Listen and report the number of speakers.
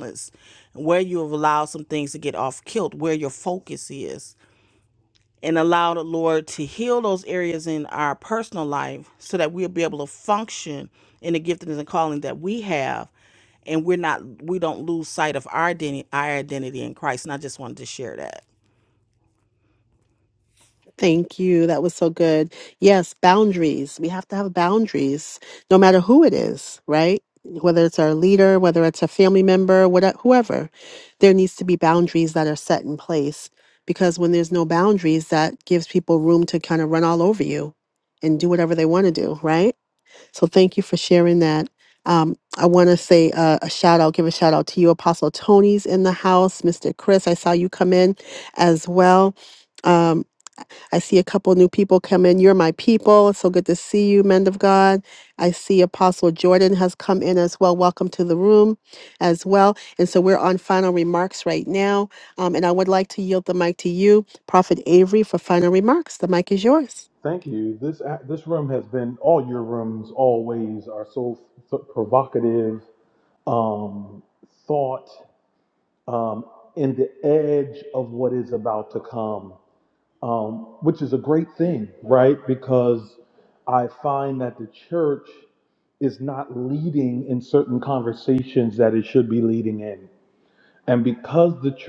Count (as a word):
three